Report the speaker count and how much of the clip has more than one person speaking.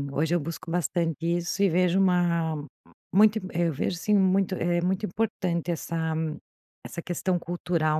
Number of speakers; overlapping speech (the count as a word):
one, no overlap